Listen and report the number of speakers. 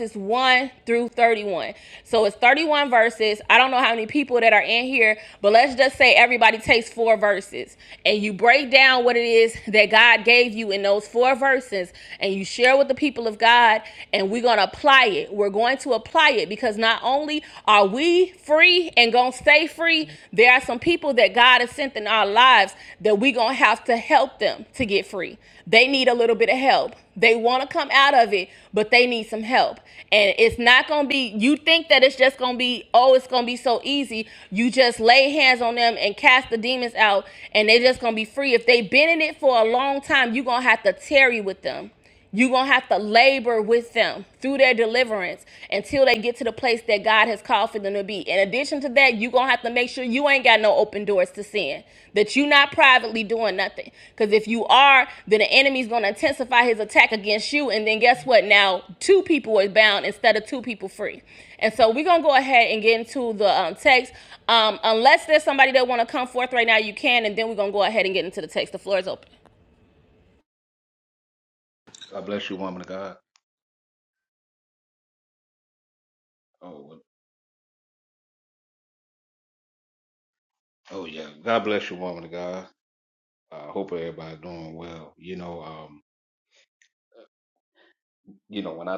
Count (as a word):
two